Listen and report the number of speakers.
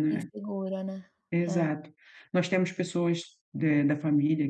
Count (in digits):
2